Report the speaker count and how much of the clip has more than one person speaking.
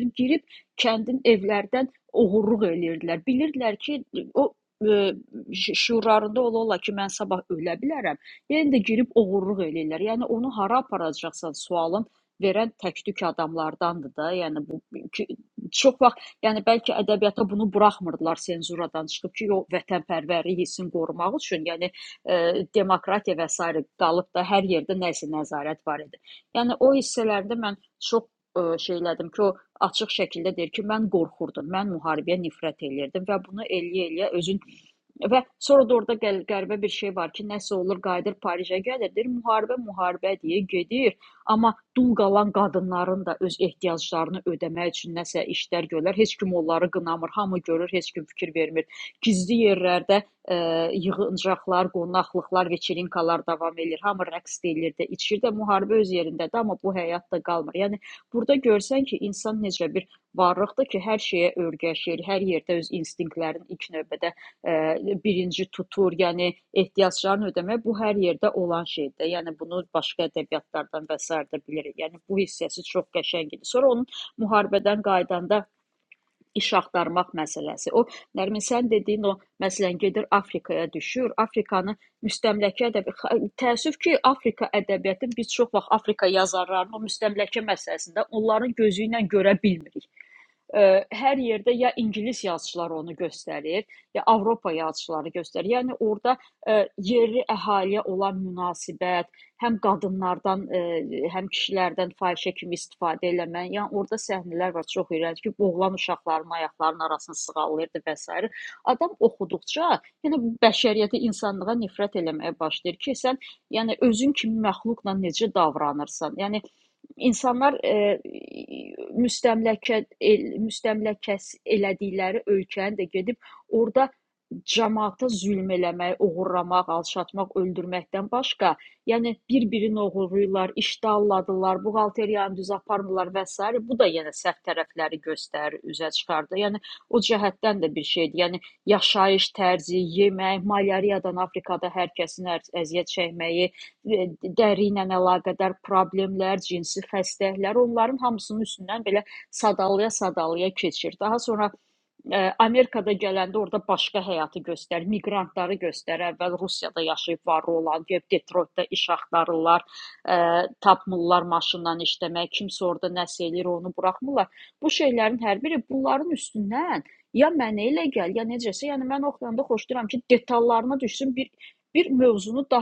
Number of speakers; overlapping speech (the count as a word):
one, no overlap